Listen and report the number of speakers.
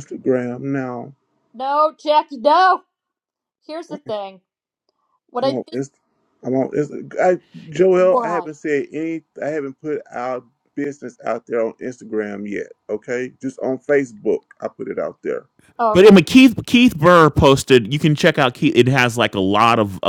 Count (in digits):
3